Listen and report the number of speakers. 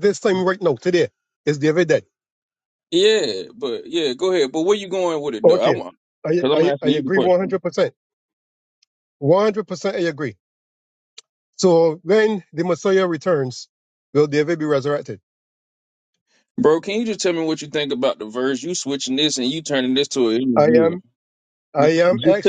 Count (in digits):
2